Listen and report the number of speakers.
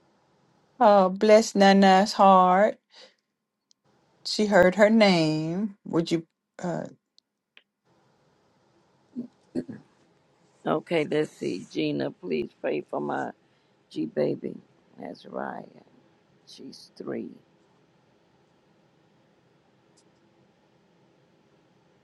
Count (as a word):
two